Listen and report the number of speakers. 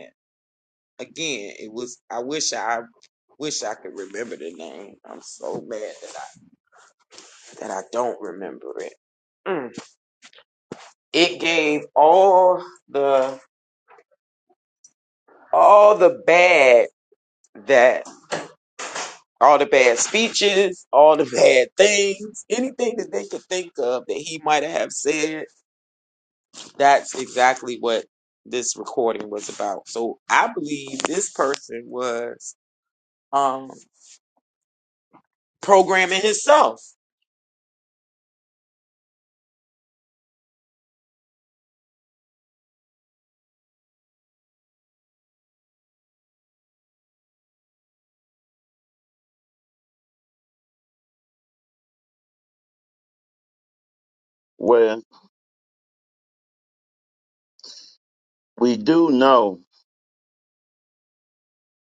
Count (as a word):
two